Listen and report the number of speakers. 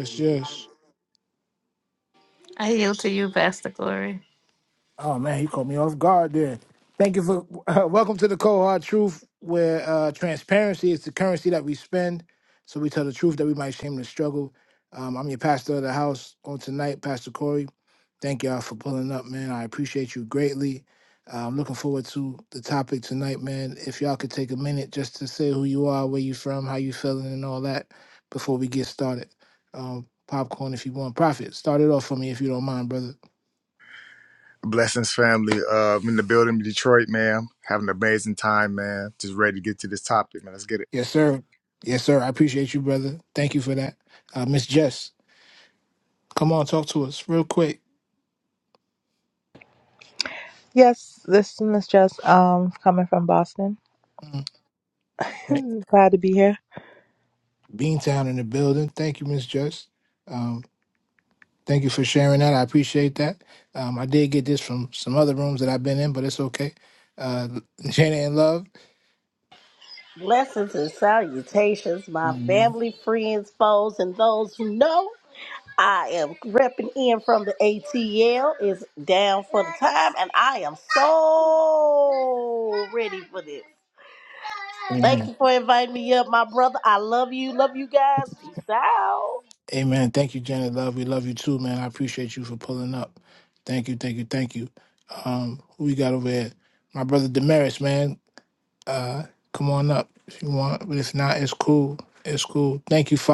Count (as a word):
five